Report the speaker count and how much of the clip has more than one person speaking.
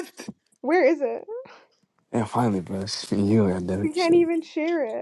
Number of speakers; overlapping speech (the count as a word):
two, about 8%